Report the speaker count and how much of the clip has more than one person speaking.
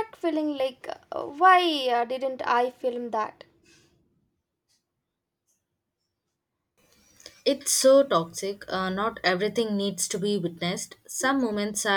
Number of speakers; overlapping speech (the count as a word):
two, no overlap